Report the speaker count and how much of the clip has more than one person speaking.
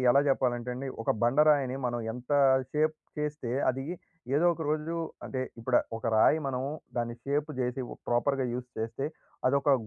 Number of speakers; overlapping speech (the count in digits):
1, no overlap